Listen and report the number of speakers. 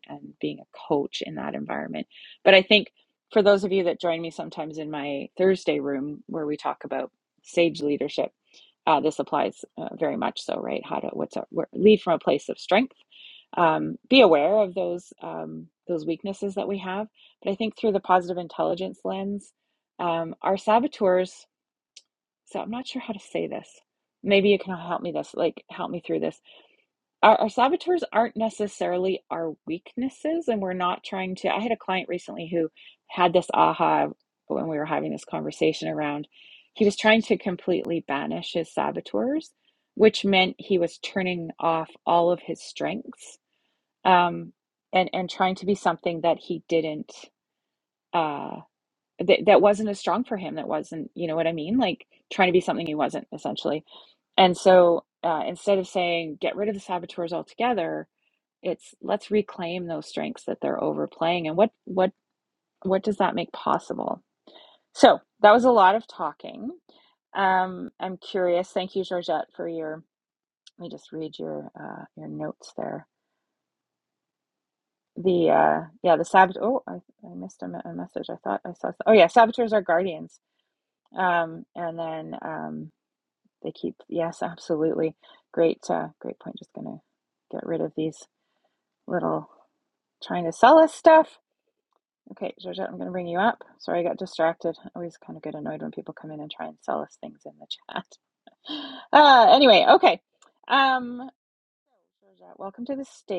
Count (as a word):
one